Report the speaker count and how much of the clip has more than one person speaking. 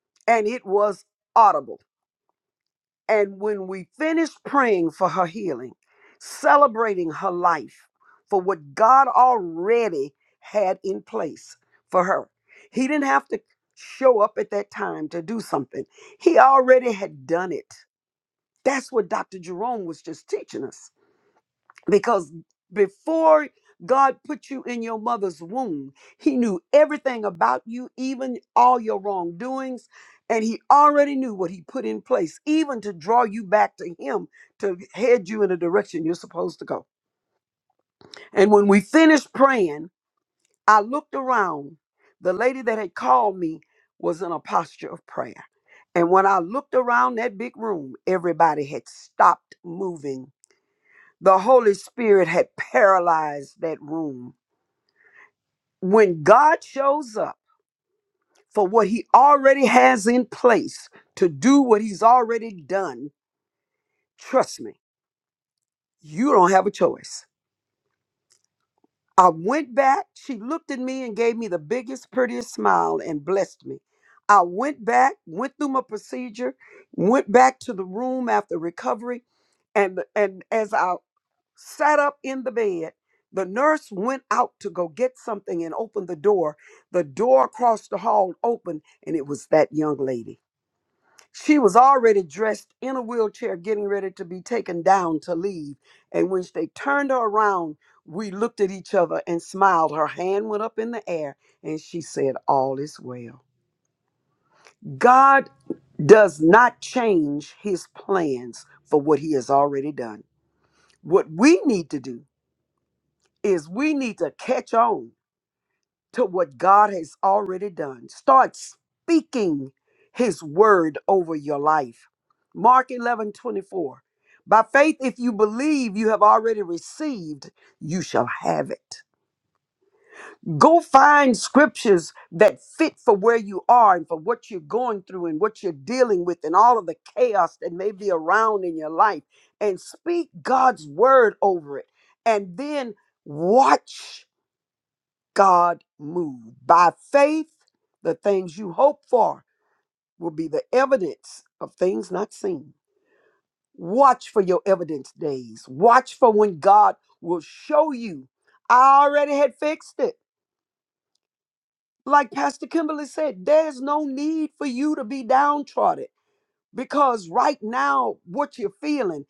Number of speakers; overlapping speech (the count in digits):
1, no overlap